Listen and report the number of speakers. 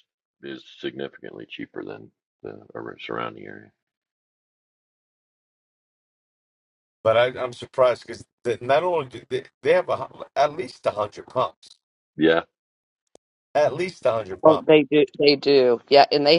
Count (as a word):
three